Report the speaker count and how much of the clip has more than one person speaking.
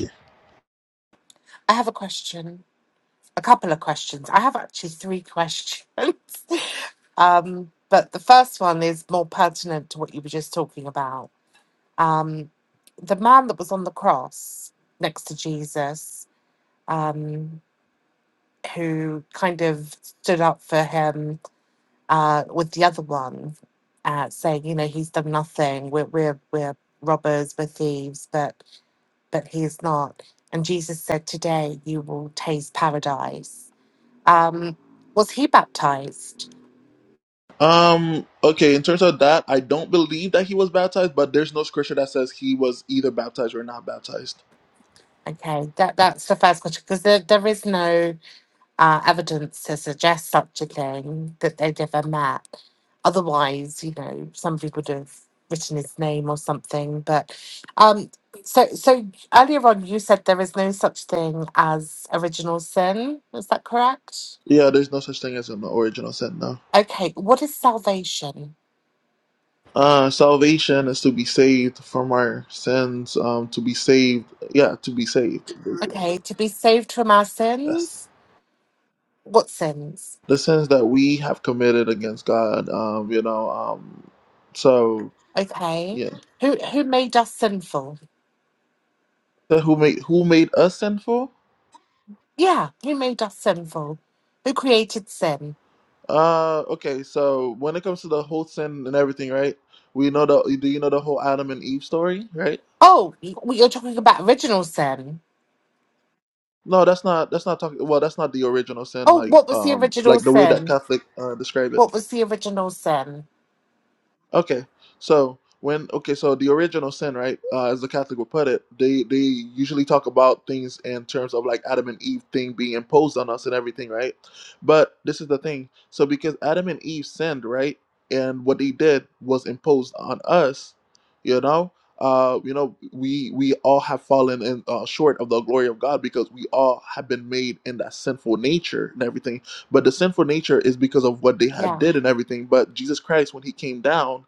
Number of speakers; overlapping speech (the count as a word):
two, about 2%